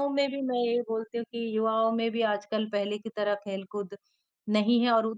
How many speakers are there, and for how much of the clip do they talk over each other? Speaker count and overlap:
1, no overlap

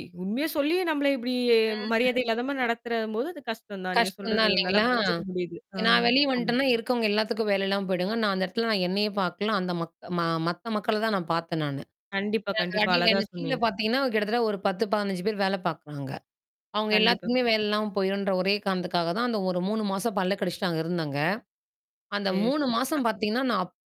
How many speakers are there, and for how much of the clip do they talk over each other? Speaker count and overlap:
2, about 16%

